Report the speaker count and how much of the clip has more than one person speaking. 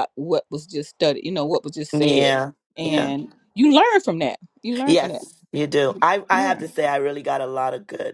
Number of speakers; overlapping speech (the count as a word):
two, about 16%